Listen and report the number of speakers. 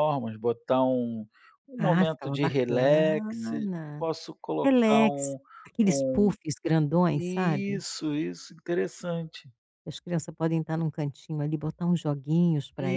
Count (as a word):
two